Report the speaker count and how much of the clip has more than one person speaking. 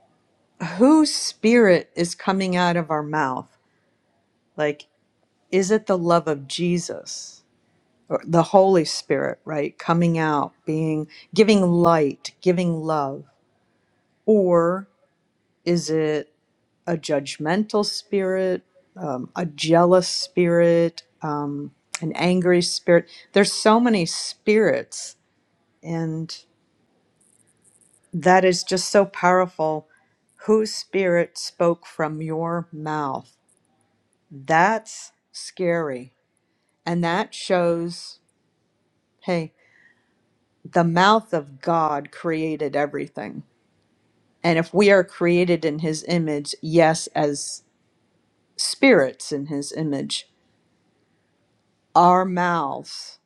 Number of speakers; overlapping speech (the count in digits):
1, no overlap